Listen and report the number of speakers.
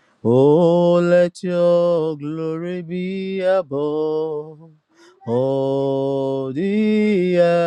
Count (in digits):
1